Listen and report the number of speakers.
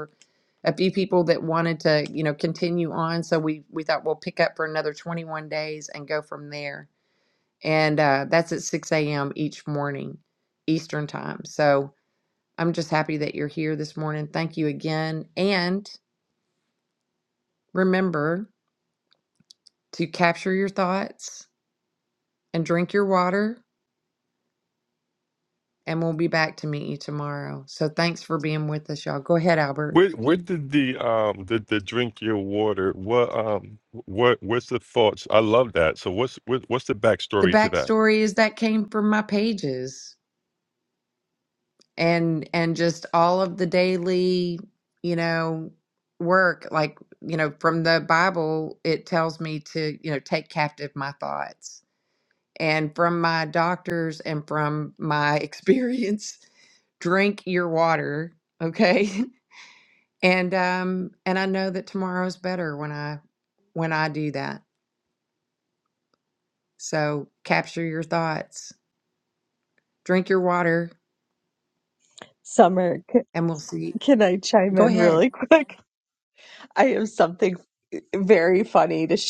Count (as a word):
three